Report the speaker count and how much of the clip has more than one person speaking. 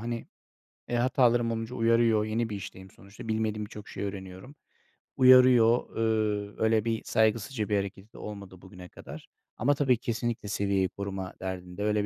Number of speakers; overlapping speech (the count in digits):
1, no overlap